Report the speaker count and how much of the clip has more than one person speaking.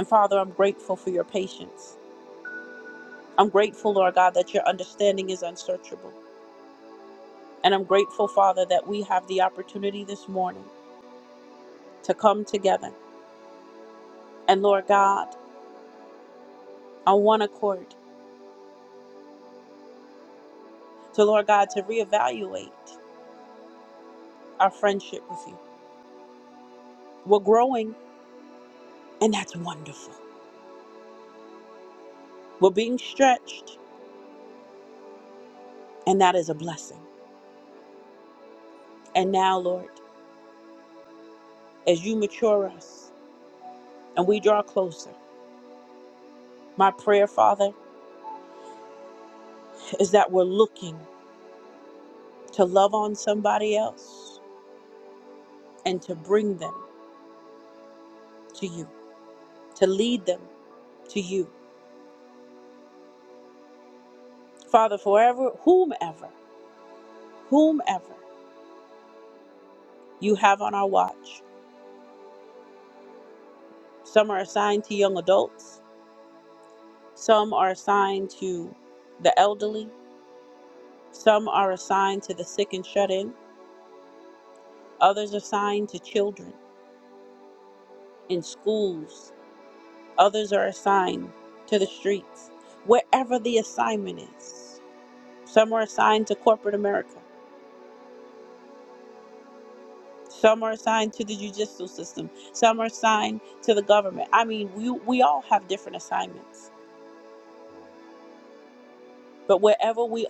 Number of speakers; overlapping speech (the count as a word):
one, no overlap